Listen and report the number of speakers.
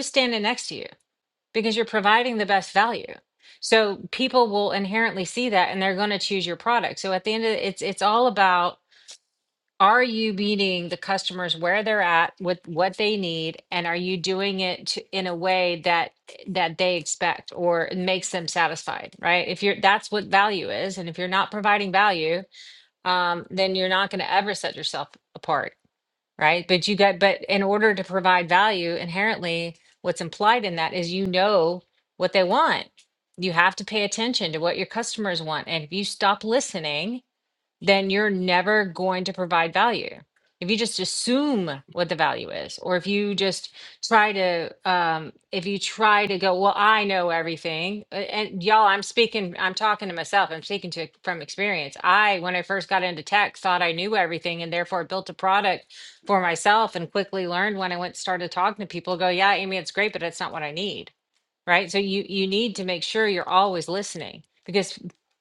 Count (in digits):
1